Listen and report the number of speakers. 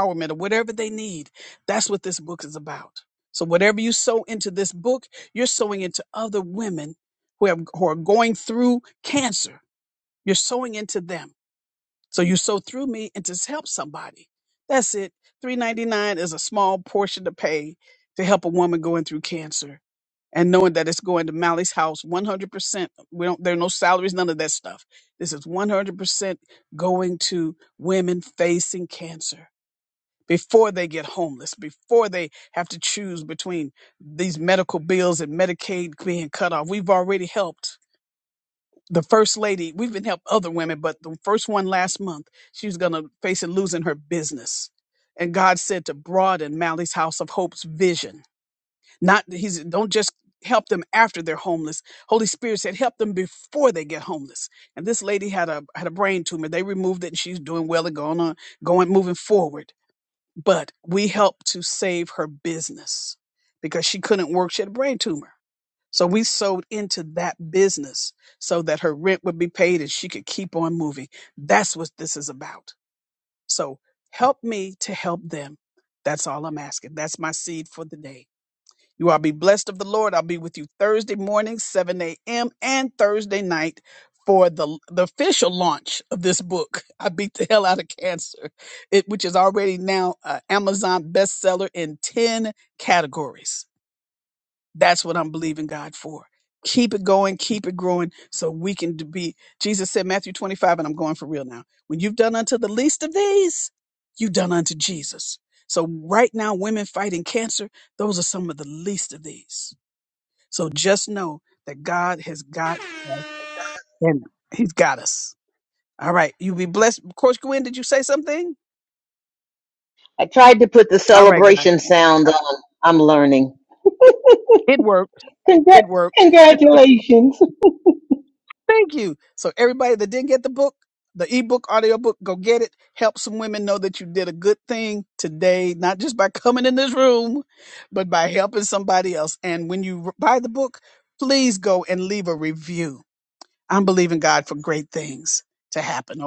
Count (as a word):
two